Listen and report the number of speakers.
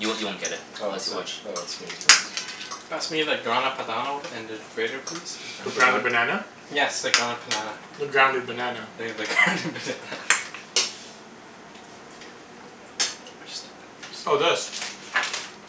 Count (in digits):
4